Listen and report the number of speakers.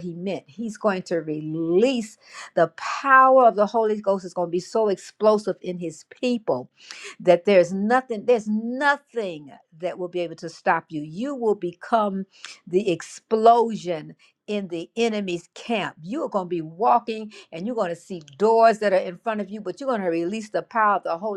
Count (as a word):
one